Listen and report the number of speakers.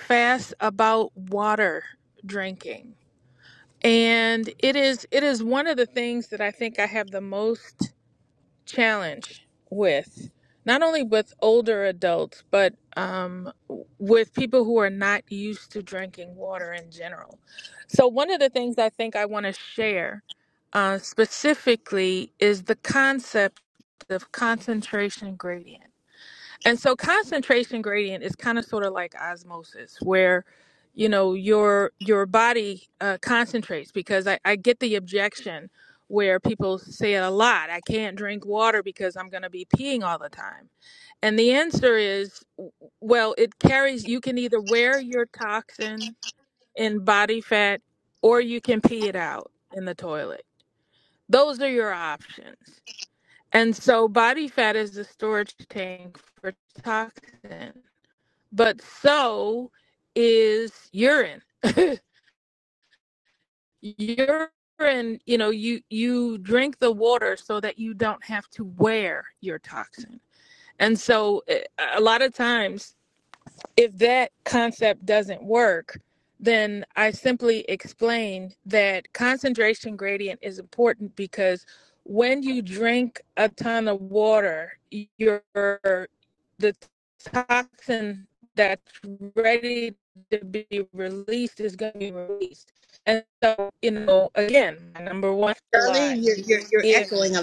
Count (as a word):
two